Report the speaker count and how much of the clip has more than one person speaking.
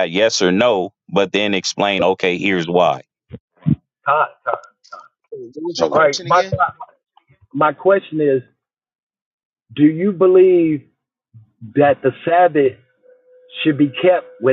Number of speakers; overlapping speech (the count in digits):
3, about 5%